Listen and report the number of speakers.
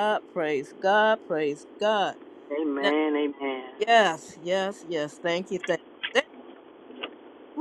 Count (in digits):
2